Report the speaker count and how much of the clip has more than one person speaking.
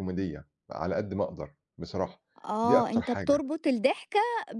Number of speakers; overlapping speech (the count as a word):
two, about 16%